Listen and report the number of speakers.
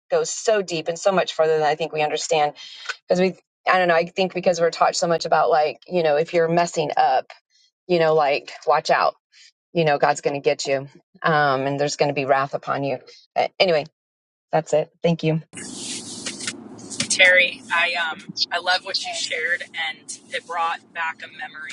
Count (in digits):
2